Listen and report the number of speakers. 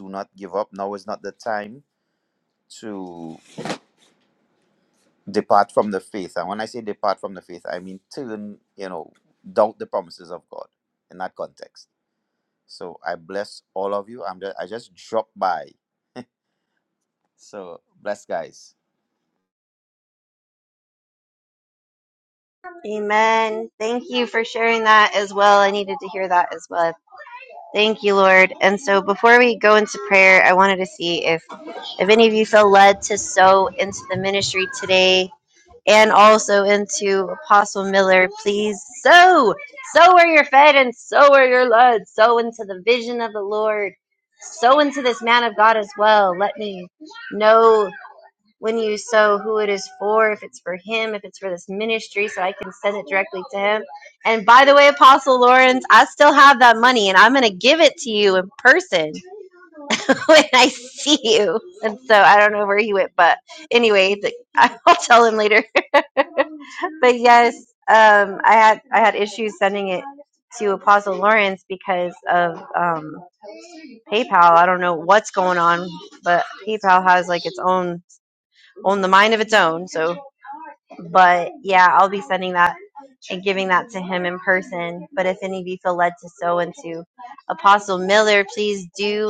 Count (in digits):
2